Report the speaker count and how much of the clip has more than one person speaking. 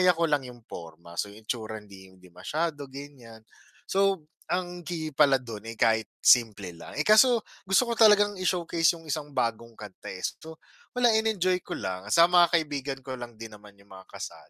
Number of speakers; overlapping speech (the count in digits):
1, no overlap